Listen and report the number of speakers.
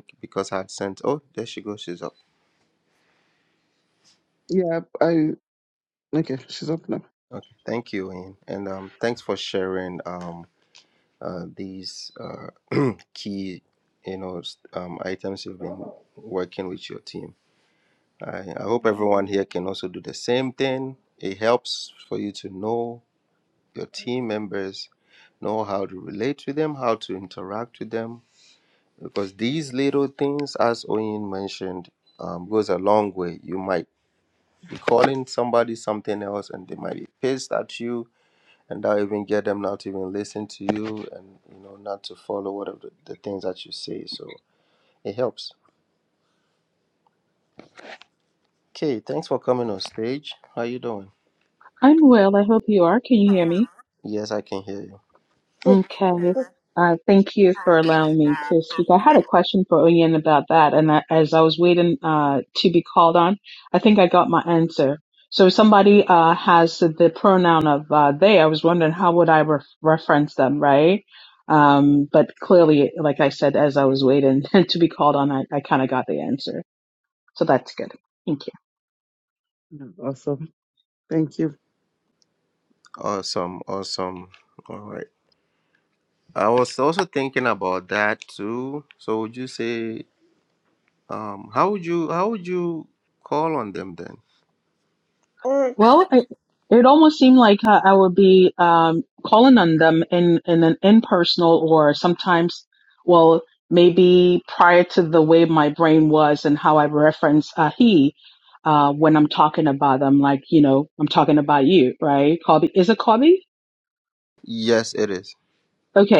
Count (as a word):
three